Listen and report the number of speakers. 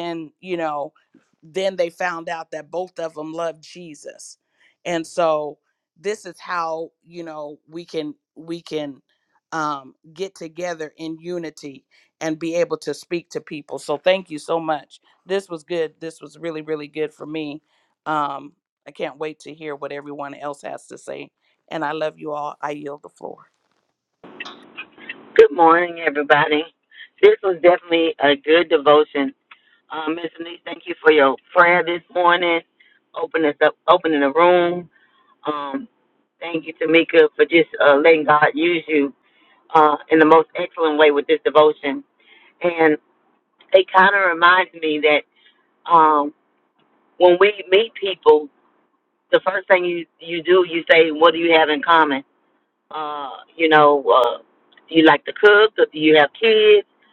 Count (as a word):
two